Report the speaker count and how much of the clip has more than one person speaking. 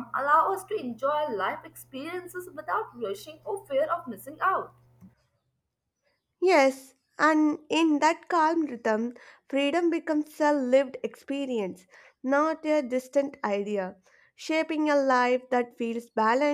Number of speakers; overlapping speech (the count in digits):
2, no overlap